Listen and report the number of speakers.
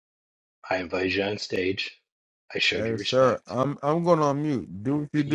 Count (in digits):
2